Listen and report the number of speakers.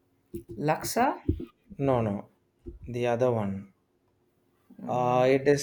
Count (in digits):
2